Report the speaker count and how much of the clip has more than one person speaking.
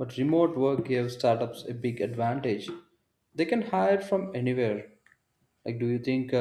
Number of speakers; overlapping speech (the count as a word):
one, no overlap